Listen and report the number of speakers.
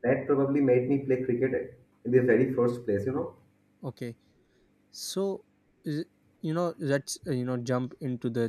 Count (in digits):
2